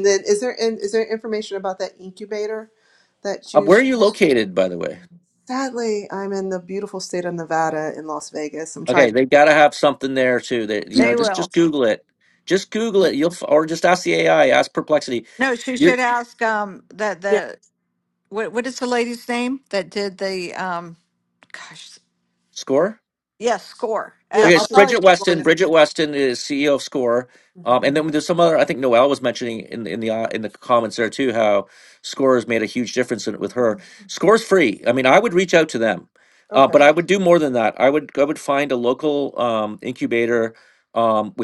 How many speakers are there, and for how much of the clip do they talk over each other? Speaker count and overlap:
three, about 7%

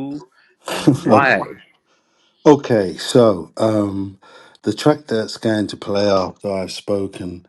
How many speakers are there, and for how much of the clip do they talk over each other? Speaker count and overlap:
two, about 7%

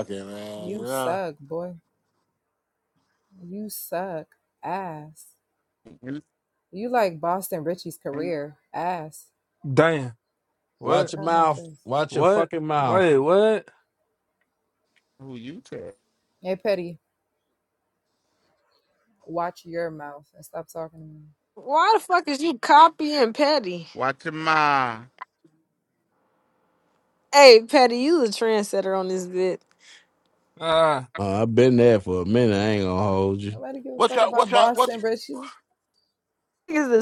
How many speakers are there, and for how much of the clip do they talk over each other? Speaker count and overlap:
six, about 8%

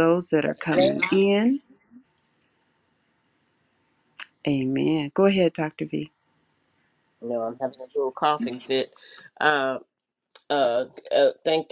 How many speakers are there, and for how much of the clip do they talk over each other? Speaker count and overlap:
two, about 2%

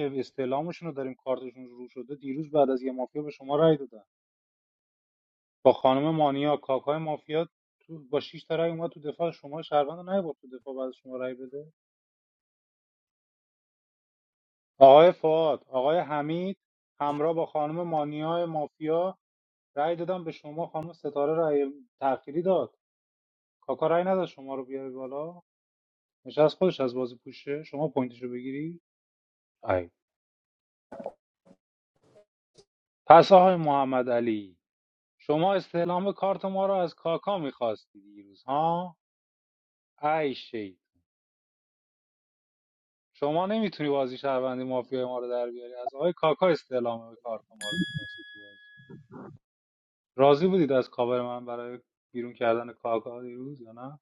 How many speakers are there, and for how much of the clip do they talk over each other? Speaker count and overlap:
one, no overlap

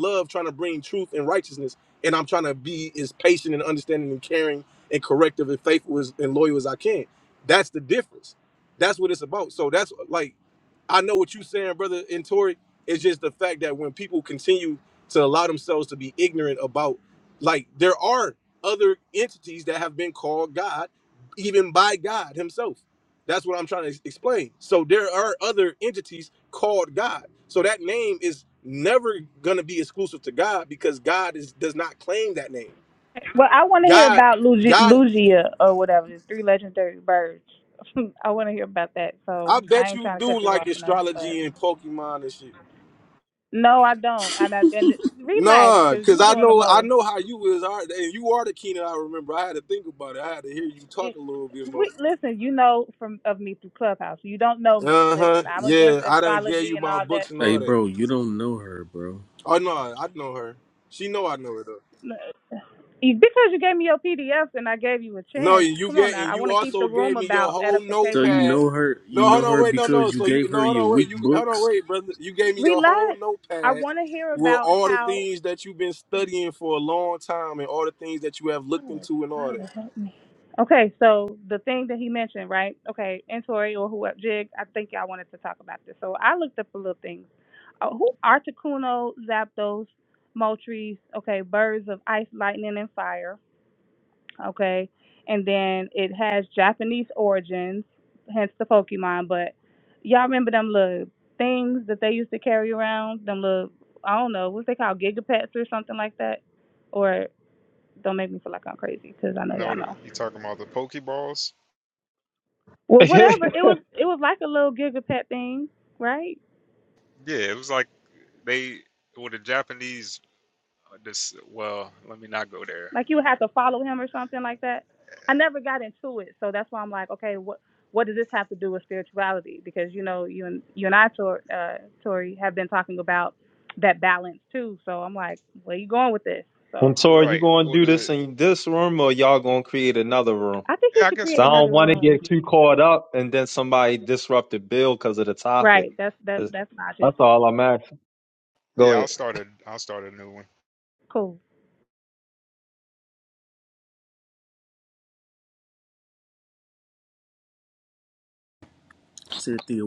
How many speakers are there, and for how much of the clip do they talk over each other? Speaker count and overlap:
five, about 12%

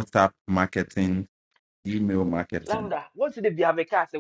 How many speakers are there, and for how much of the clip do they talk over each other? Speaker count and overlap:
two, about 6%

